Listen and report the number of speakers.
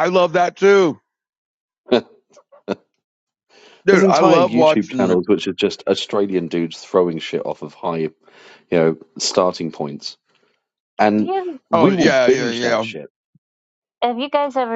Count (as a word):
three